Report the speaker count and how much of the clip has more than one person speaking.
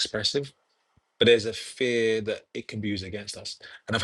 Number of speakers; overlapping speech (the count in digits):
1, no overlap